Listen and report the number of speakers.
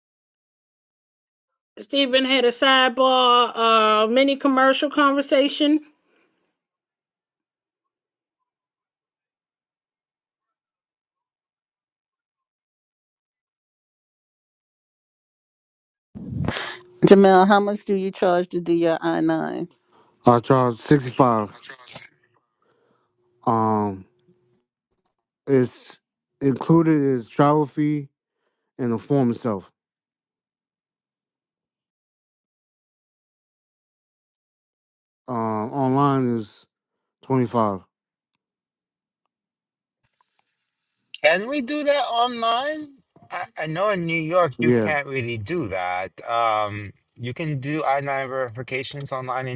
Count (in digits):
4